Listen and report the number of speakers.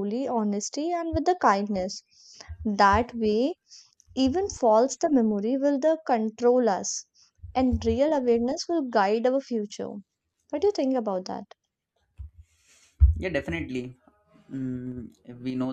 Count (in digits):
2